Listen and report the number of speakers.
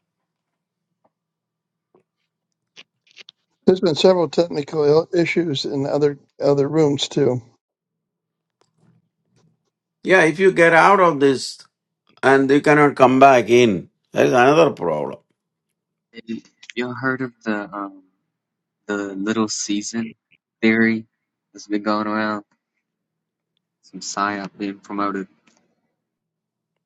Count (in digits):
3